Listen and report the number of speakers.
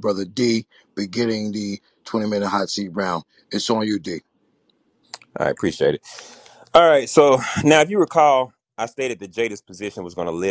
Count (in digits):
2